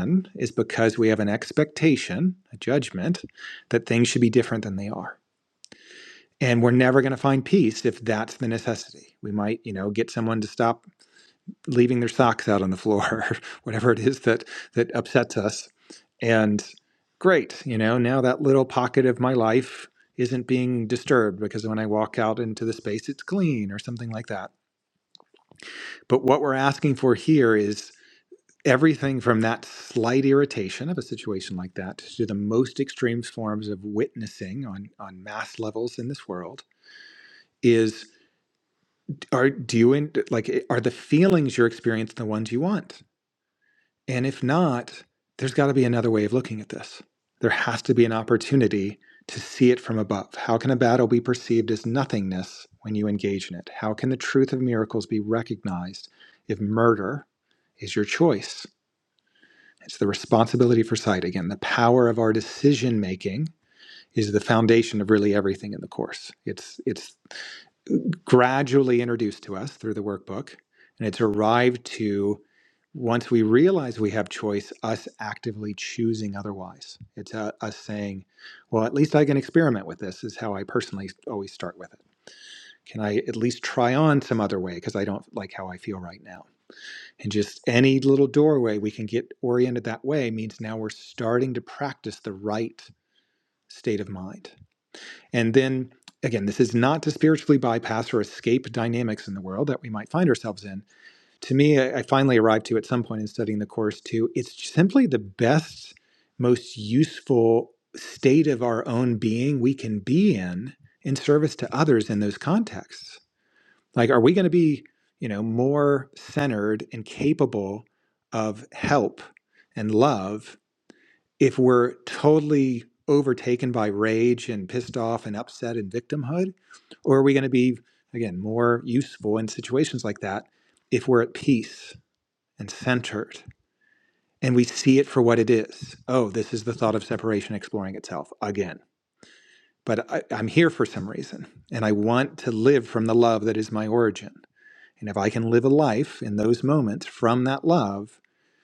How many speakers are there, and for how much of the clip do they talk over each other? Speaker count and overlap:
1, no overlap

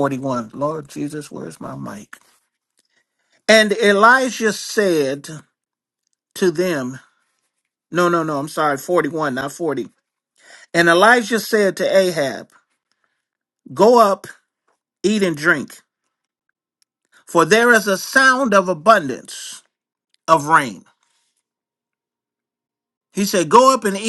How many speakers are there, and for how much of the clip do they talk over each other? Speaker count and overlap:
1, no overlap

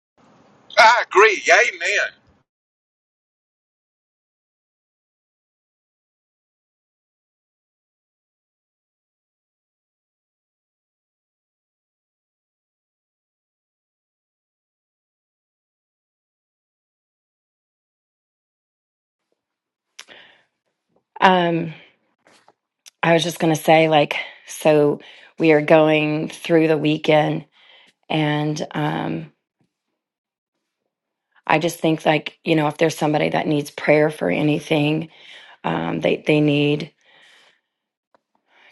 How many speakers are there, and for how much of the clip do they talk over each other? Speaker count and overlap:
2, no overlap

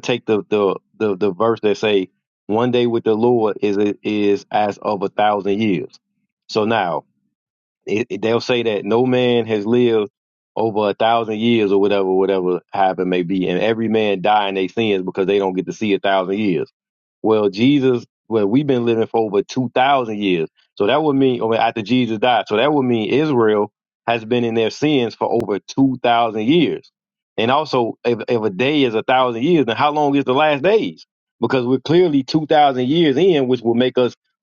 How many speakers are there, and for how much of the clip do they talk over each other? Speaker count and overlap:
1, no overlap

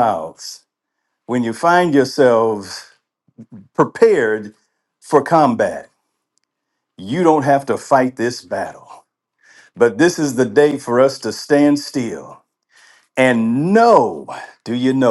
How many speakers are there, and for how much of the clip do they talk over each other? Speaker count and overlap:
1, no overlap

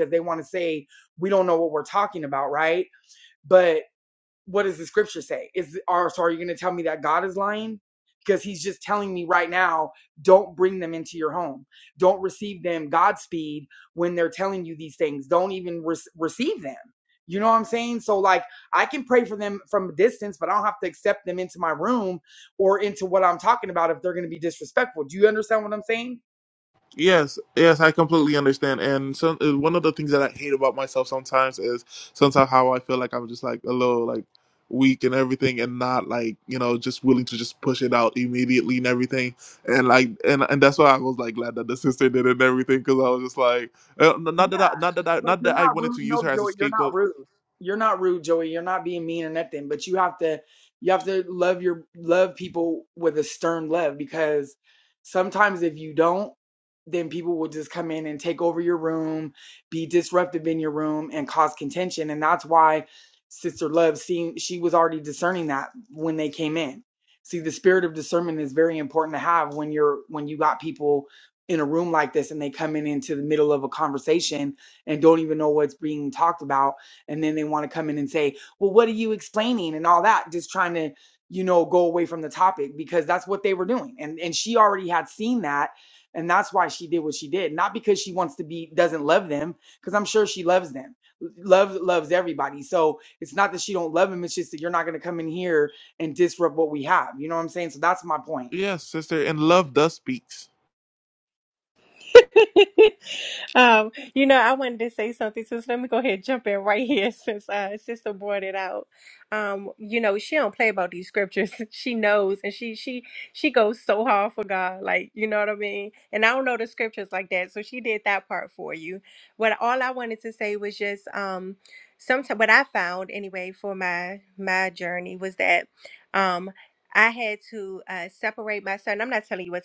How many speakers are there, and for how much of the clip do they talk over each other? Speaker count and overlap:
3, about 1%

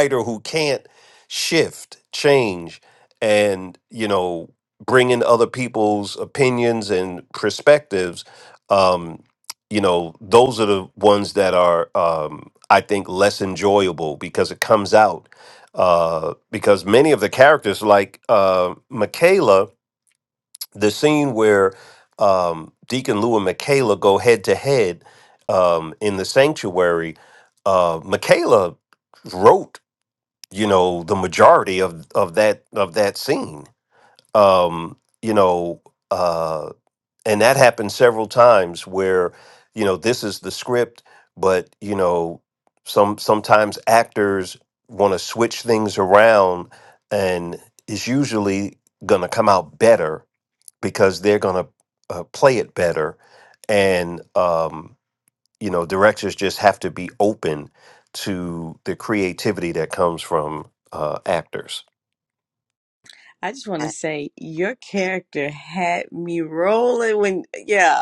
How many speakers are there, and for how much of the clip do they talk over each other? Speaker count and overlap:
2, no overlap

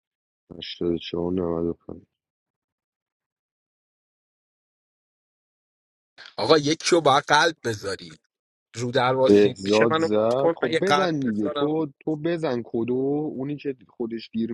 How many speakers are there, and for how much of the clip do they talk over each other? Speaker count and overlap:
2, about 17%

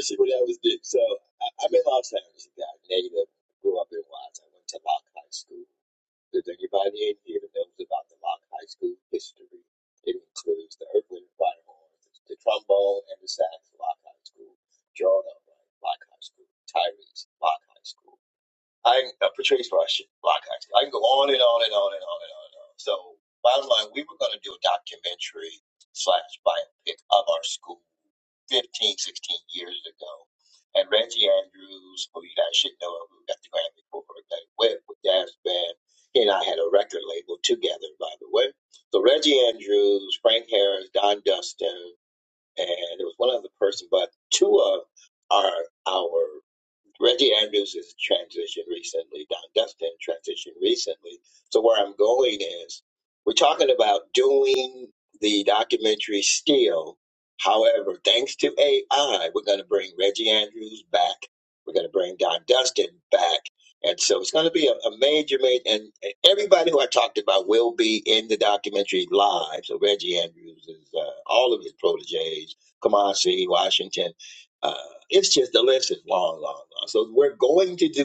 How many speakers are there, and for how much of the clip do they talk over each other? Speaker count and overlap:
1, no overlap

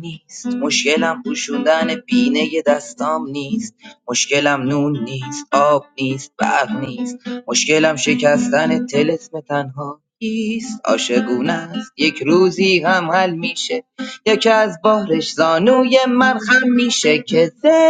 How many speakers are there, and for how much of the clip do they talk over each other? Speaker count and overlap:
1, no overlap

